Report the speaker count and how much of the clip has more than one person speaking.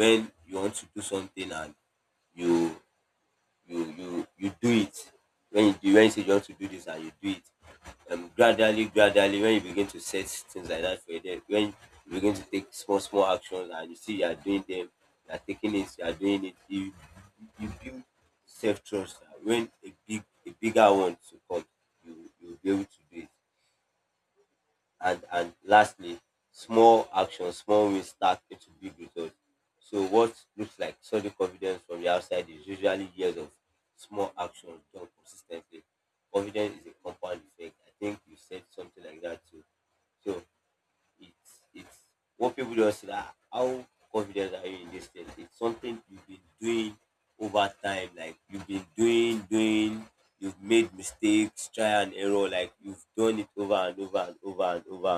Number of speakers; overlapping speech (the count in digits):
1, no overlap